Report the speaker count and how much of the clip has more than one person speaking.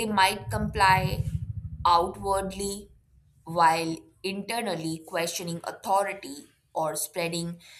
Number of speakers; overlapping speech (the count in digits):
1, no overlap